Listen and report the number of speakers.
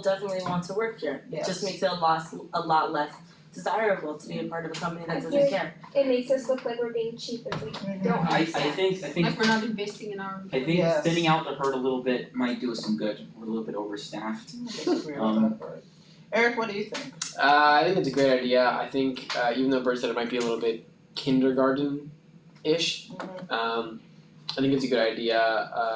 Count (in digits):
6